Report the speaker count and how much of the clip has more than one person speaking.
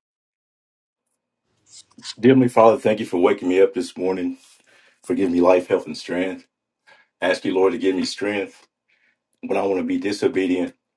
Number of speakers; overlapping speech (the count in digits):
1, no overlap